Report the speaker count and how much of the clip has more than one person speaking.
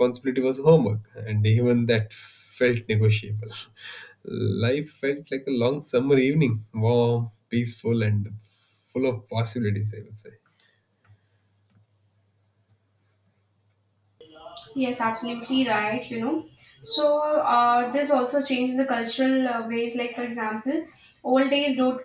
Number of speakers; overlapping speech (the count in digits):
2, no overlap